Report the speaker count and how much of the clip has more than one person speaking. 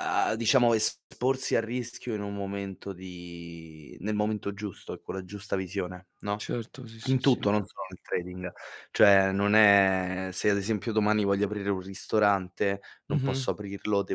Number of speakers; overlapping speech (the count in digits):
2, about 5%